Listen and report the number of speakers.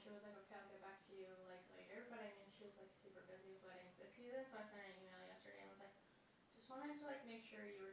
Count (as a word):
one